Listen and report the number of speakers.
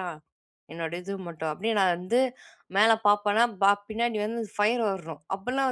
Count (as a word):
one